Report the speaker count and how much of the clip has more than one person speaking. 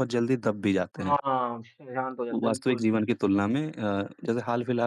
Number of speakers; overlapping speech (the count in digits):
2, about 24%